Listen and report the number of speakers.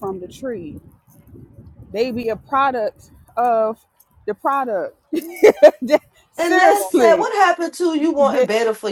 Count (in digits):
2